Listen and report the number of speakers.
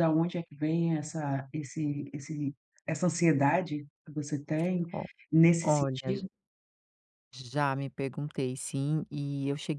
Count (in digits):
2